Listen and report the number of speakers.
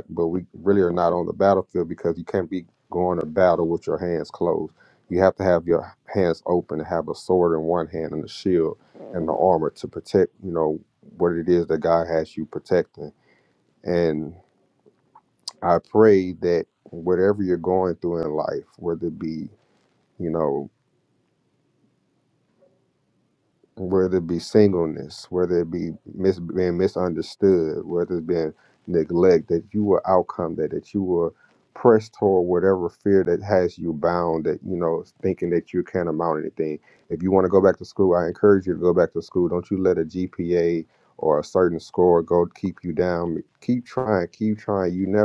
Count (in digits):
1